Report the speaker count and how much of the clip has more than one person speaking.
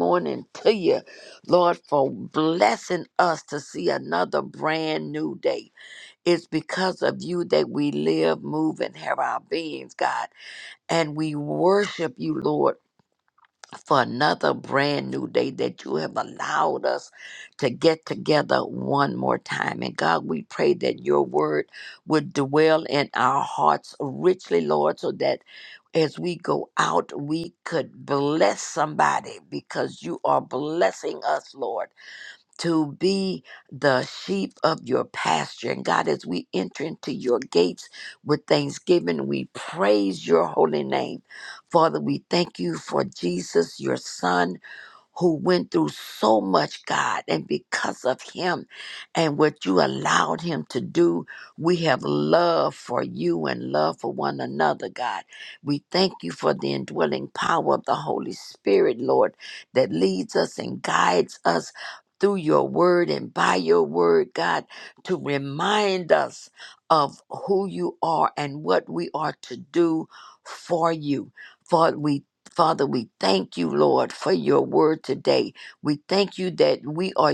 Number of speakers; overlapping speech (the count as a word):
one, no overlap